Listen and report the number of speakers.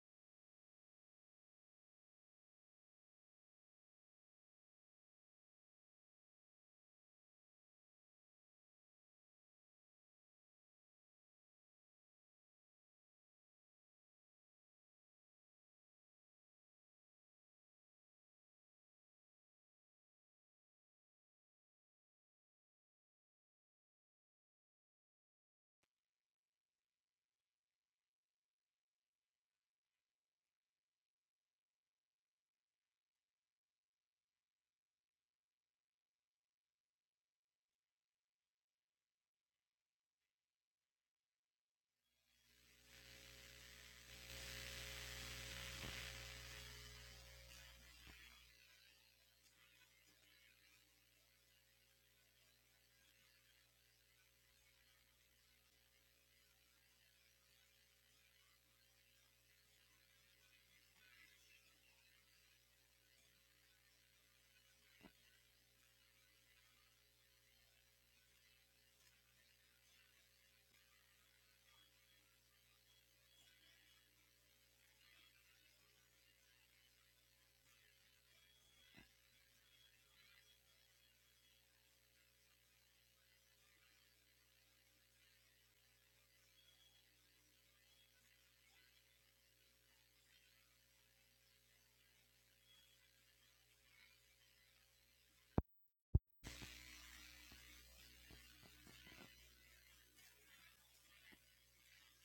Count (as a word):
zero